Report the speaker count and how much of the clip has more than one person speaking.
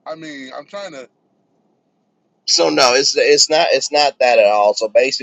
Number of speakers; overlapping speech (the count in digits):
2, no overlap